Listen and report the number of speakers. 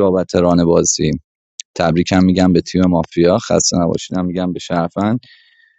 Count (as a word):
one